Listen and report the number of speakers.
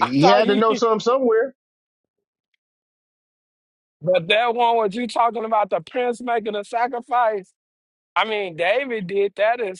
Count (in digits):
2